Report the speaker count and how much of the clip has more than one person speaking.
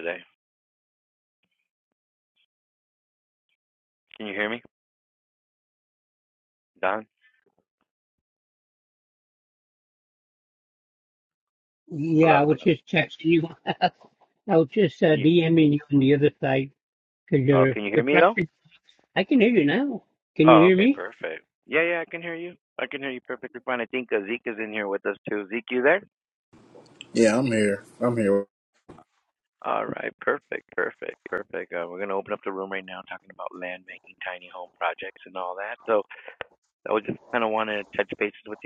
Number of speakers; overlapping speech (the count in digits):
3, about 5%